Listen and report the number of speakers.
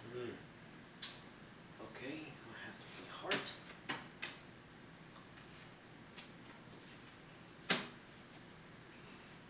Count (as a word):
one